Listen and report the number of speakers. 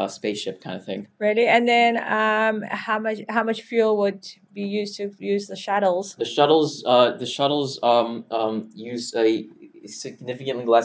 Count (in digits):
2